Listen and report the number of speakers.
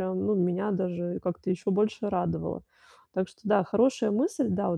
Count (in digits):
1